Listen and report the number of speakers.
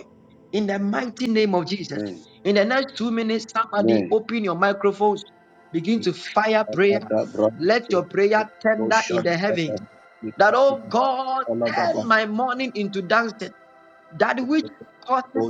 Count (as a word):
two